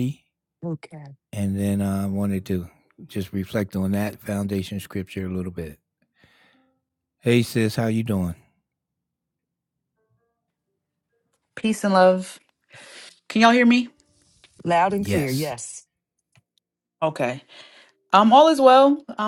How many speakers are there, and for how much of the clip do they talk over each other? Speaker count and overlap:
three, about 3%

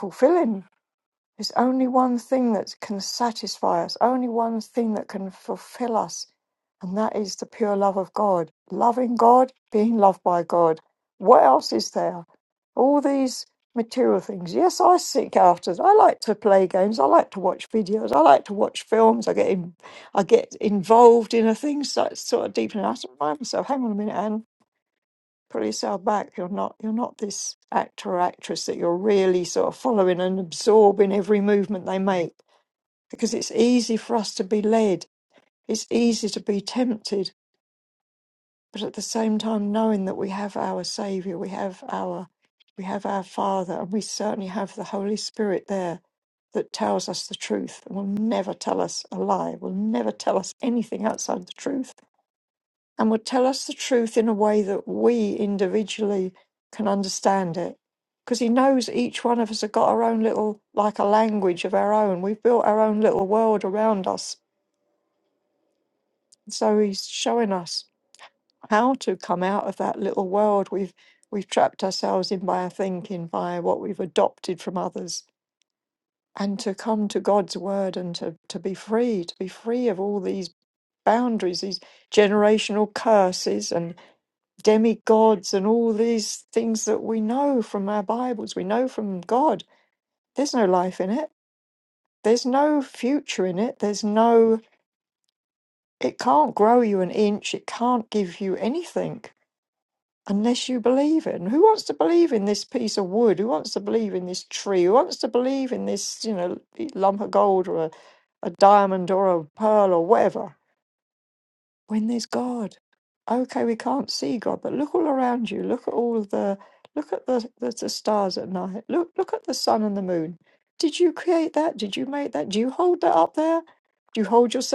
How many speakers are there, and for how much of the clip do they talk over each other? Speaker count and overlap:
one, no overlap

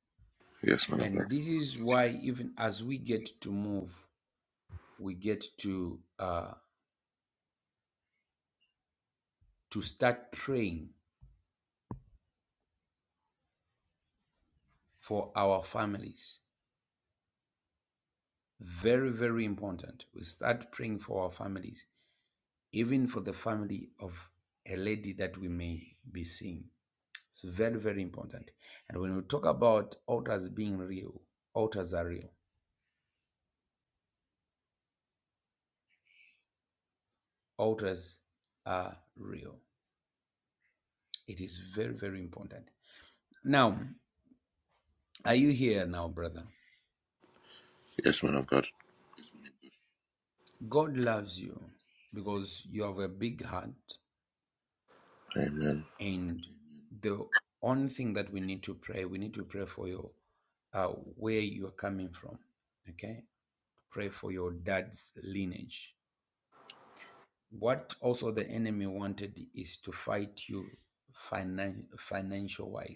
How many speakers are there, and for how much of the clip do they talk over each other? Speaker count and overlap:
two, under 1%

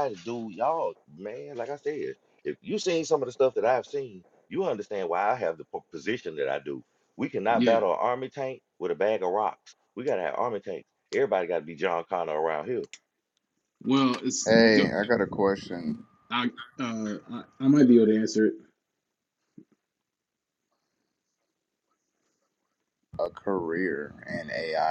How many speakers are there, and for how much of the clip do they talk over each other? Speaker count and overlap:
three, about 3%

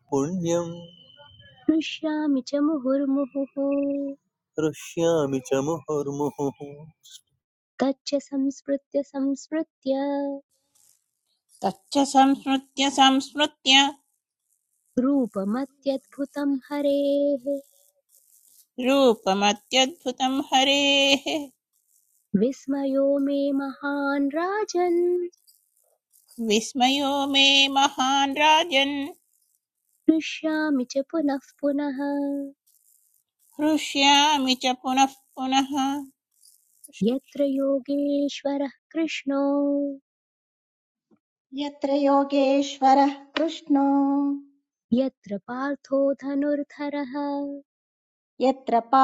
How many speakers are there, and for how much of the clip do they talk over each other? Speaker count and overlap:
four, no overlap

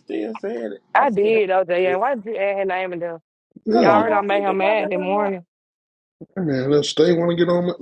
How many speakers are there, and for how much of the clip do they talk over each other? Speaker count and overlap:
three, about 28%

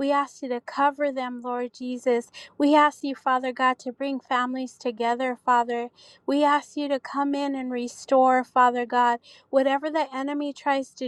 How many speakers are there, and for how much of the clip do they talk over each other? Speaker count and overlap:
one, no overlap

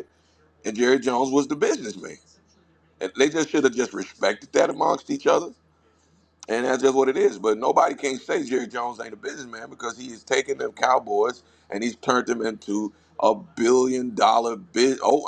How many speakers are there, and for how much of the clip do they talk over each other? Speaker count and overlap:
one, no overlap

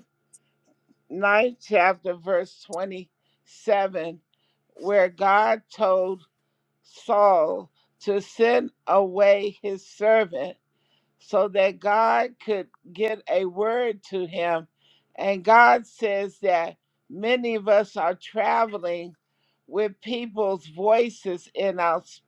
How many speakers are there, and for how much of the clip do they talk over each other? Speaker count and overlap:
one, no overlap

